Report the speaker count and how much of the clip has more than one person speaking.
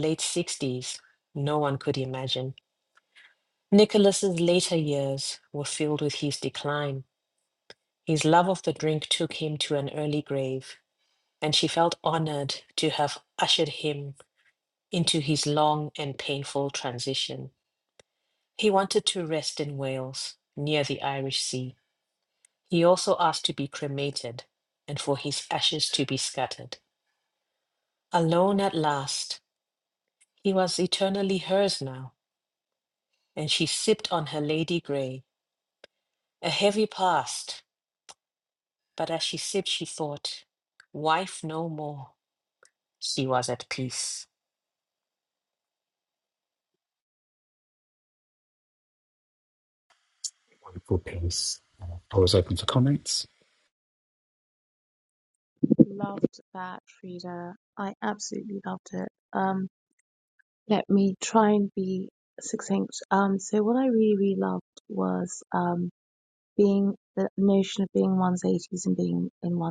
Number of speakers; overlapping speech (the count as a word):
three, no overlap